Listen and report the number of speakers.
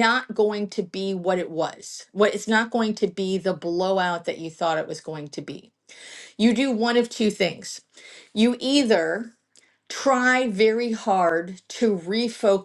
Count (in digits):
1